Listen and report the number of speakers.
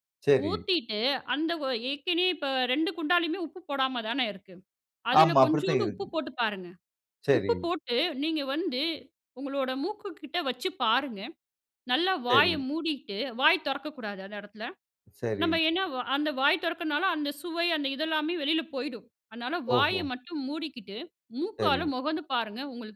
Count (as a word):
two